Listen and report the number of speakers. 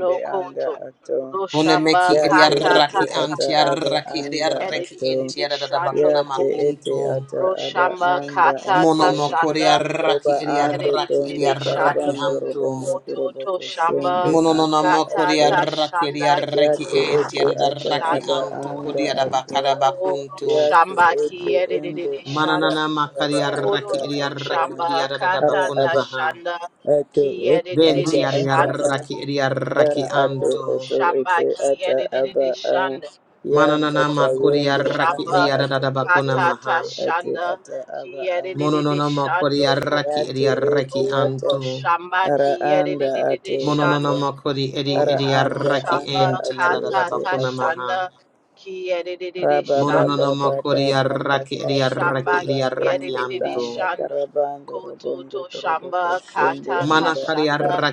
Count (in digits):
3